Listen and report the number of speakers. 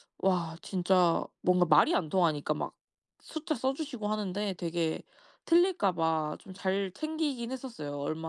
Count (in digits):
1